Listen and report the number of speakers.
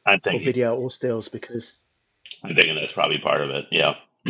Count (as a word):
two